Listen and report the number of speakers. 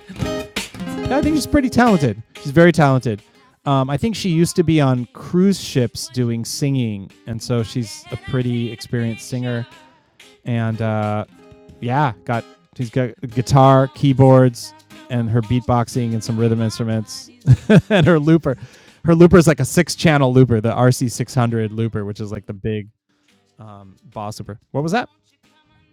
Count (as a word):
one